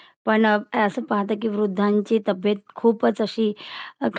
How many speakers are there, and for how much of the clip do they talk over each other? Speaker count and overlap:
one, no overlap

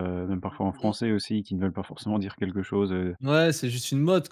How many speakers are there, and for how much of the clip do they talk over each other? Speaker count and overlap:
two, about 3%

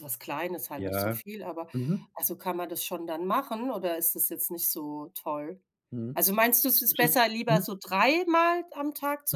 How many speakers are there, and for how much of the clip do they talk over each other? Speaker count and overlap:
two, about 9%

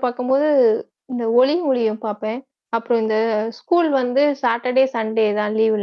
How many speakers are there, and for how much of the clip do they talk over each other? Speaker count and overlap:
one, no overlap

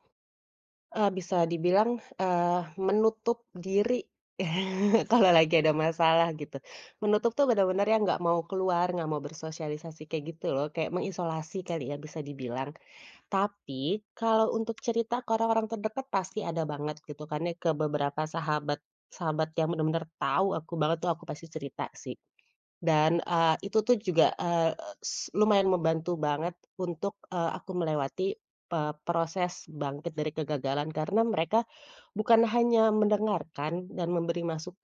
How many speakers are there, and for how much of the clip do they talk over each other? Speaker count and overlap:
one, no overlap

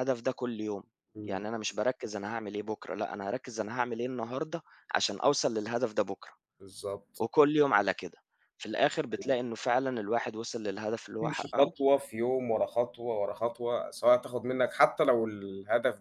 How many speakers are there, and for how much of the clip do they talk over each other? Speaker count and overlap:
two, about 5%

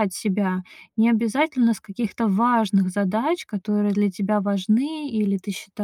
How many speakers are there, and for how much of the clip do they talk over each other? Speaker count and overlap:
one, no overlap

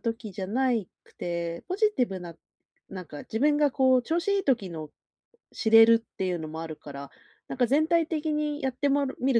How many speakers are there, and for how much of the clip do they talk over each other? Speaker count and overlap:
one, no overlap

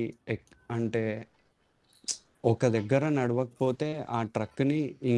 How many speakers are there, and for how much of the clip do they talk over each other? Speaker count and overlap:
one, no overlap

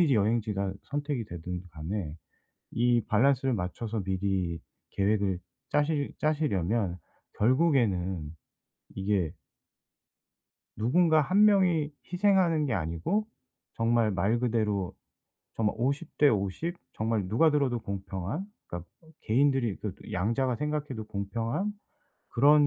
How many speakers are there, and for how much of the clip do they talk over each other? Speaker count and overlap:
one, no overlap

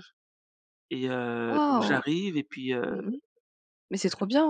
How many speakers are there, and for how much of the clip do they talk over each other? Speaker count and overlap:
two, about 20%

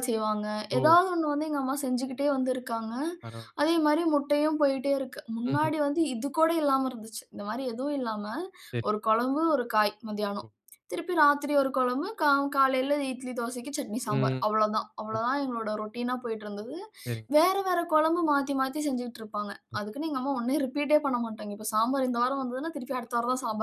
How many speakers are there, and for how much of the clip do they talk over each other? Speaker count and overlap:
two, about 4%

